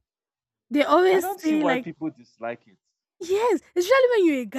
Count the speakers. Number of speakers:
2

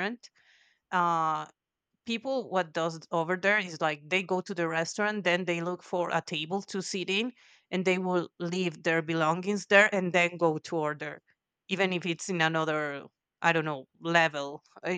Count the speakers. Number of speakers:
1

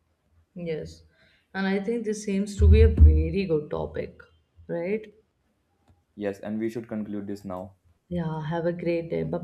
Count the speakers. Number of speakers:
2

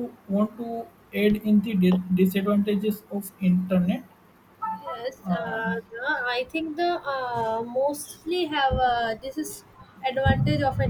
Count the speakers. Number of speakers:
2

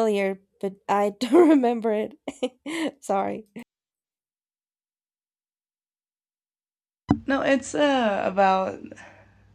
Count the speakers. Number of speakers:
2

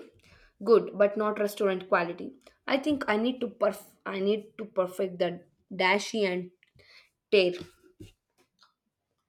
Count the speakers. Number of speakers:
1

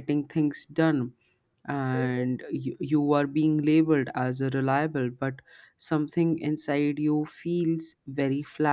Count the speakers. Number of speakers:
1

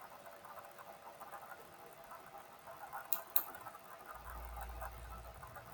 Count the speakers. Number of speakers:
0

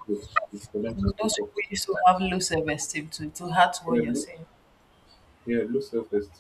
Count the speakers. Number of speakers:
2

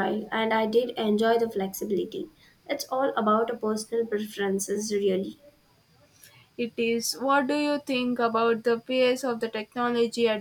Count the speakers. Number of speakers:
2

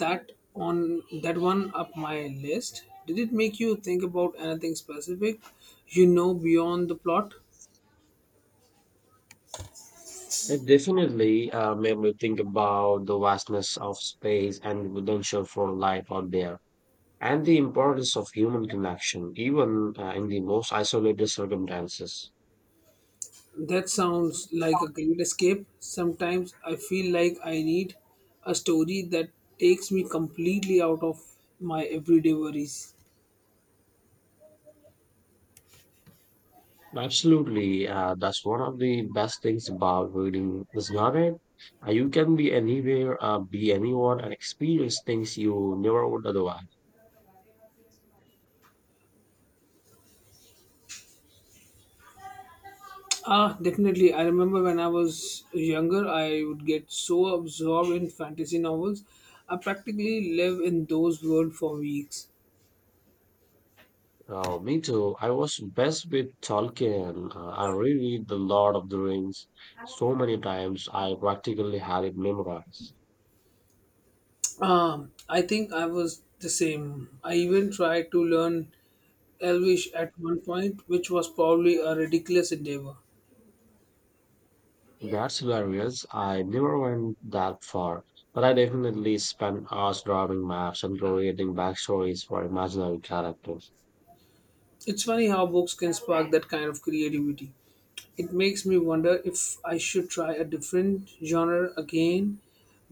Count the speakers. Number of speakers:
2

